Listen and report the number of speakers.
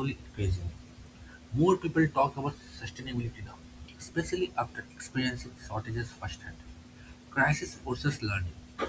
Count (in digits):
1